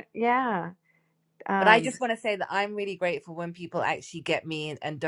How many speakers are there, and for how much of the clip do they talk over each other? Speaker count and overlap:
2, about 7%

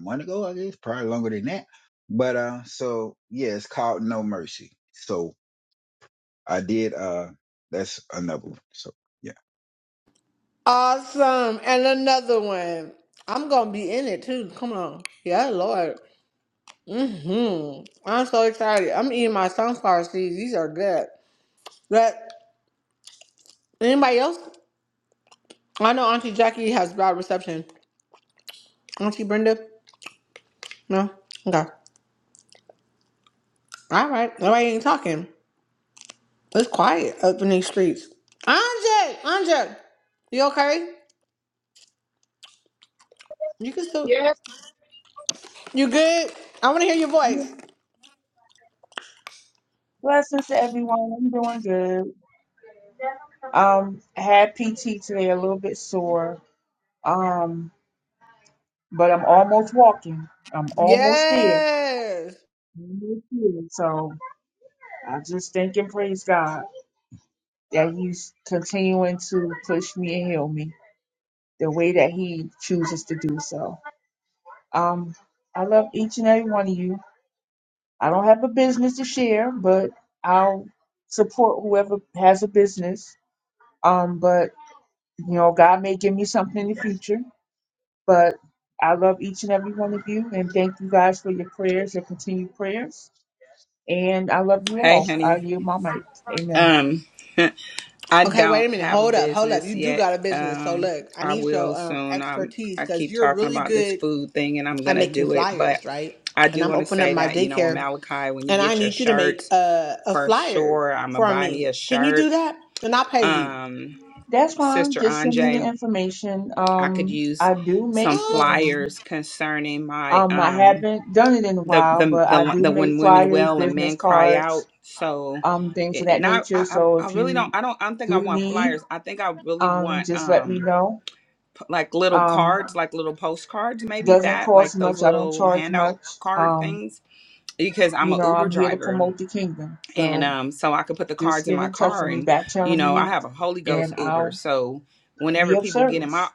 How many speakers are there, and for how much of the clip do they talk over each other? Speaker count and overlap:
4, about 20%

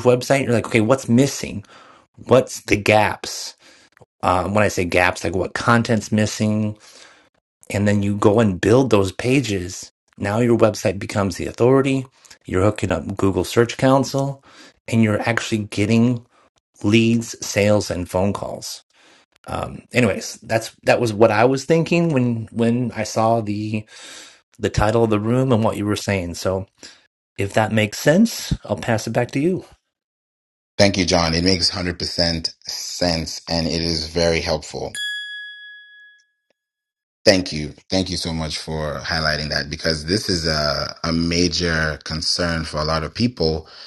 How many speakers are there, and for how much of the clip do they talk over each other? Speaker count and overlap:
2, no overlap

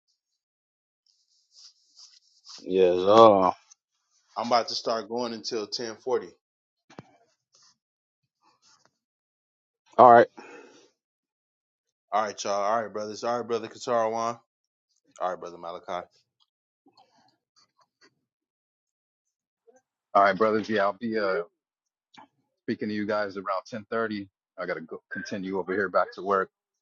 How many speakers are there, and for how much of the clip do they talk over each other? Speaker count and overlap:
3, no overlap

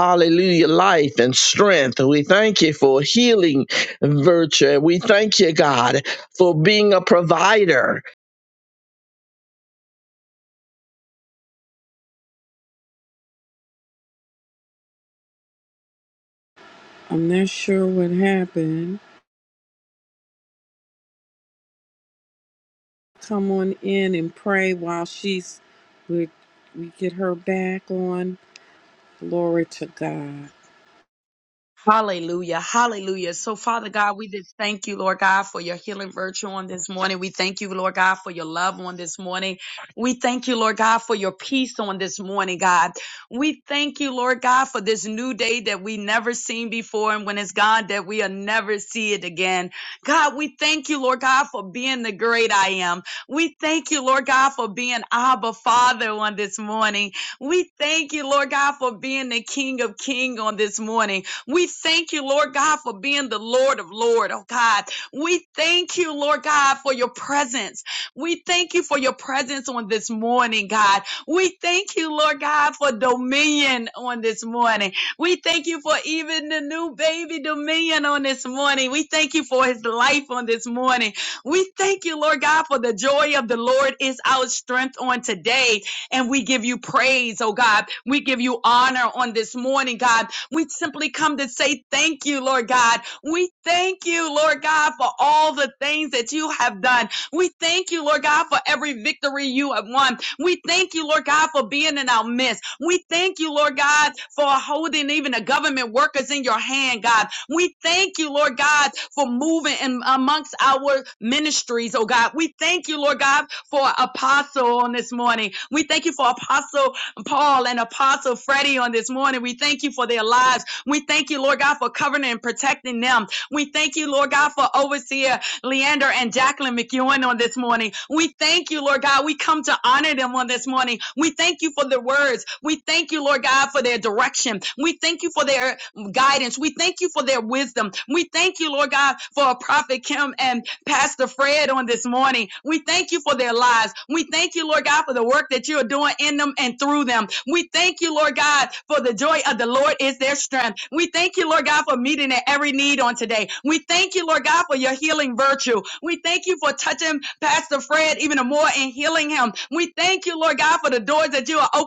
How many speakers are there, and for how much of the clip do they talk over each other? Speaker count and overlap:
3, no overlap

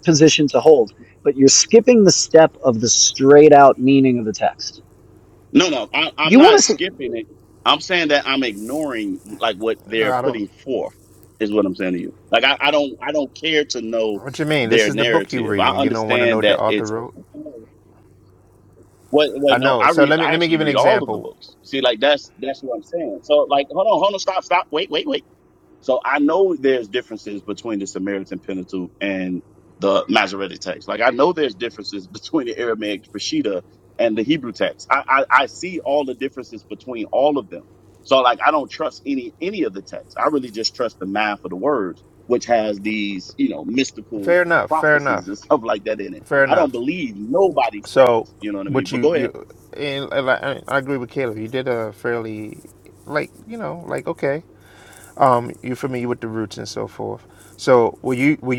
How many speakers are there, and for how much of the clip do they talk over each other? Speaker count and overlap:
3, about 12%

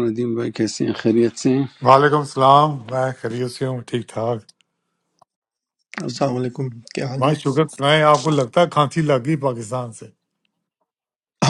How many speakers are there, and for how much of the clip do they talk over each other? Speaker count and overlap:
3, about 2%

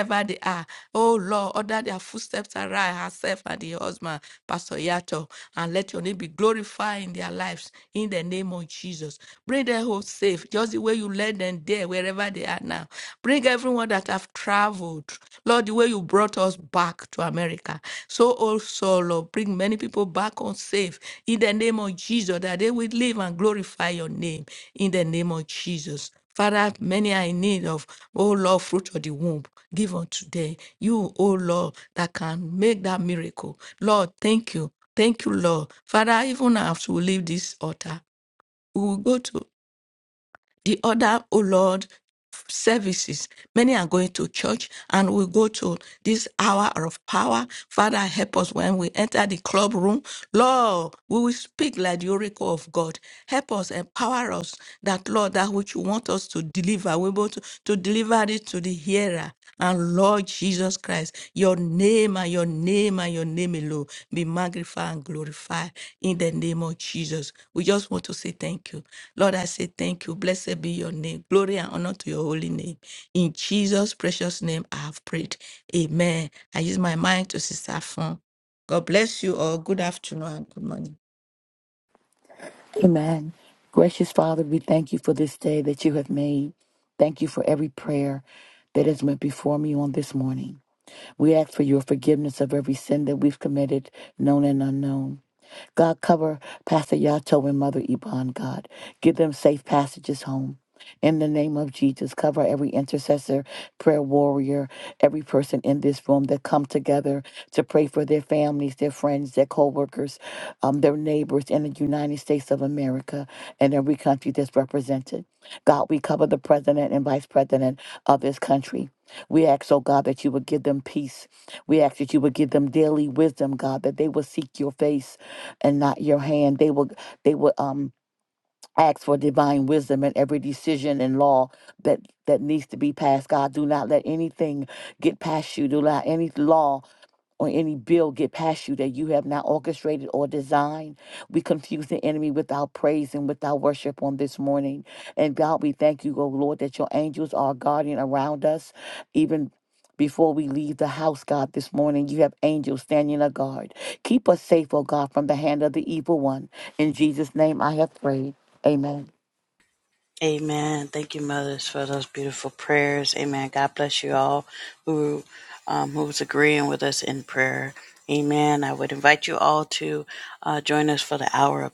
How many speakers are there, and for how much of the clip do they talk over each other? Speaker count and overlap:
3, no overlap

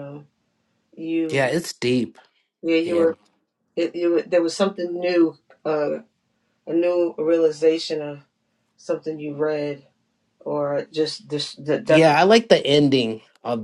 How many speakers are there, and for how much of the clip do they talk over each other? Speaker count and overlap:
2, about 6%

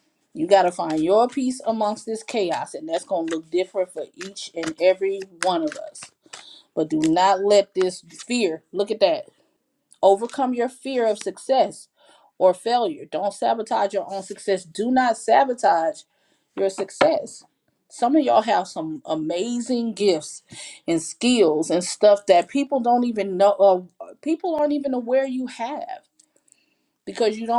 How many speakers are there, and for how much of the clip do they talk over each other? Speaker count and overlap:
1, no overlap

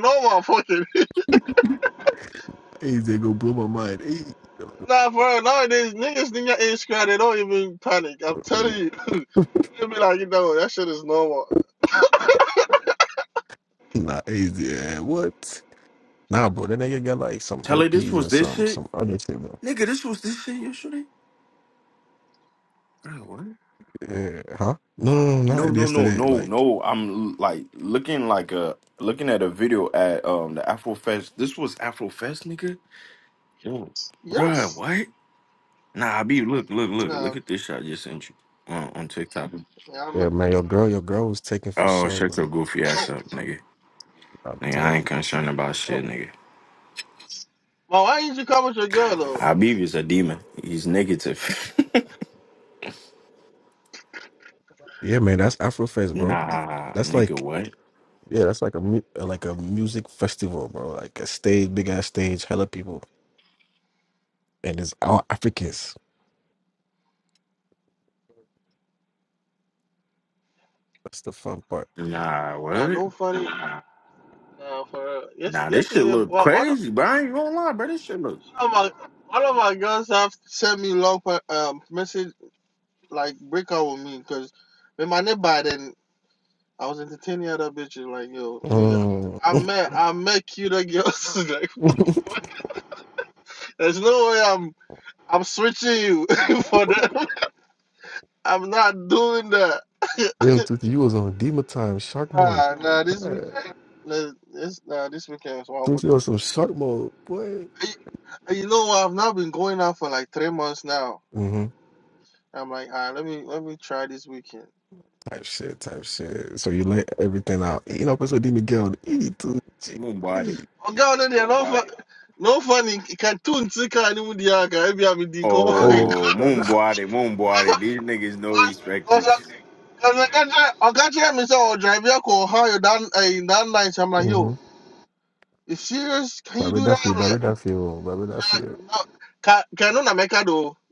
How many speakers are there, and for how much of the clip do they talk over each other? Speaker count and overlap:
3, about 8%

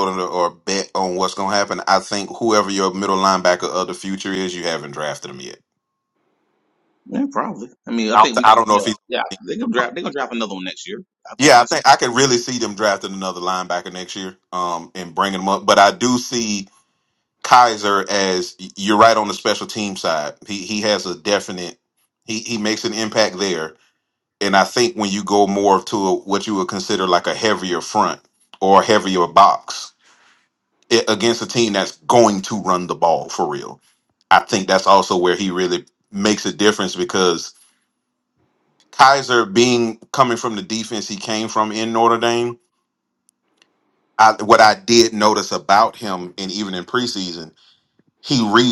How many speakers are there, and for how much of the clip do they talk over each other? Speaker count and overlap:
2, about 2%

